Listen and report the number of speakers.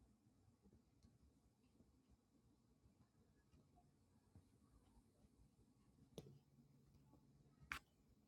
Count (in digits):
0